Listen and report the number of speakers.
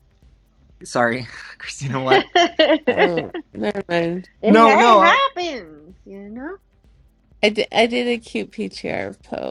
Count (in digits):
3